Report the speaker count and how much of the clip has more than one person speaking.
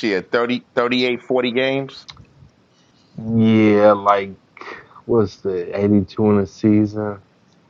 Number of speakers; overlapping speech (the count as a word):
two, no overlap